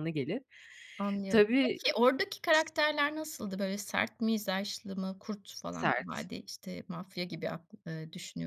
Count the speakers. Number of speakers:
2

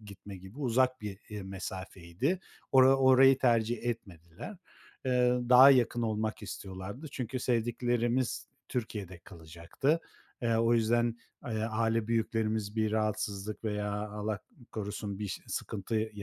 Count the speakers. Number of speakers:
1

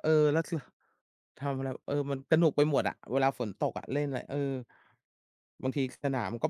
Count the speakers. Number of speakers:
1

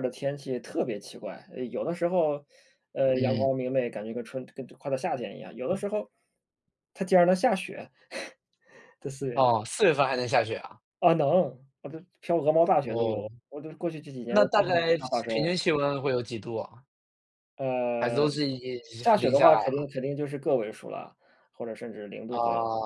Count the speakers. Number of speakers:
2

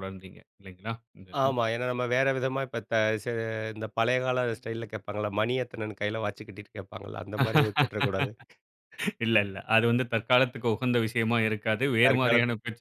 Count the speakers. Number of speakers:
2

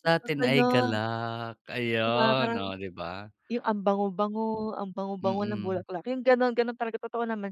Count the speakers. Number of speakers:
2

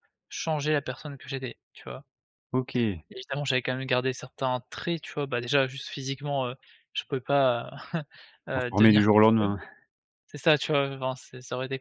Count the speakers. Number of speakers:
2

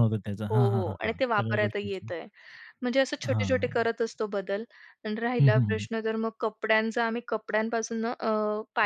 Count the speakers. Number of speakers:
2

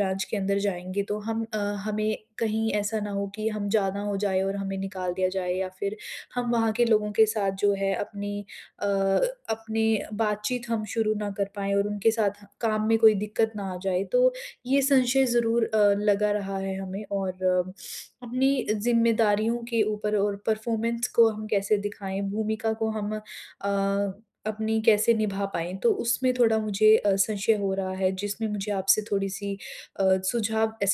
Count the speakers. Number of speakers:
1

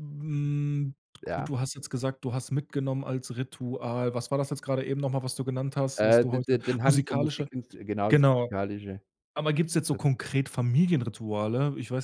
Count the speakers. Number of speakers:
2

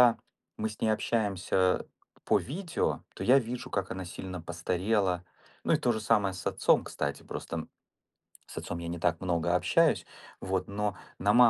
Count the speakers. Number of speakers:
1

